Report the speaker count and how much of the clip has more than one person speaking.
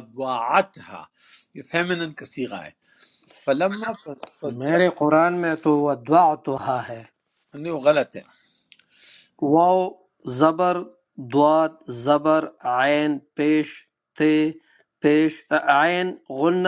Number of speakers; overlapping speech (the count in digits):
2, about 1%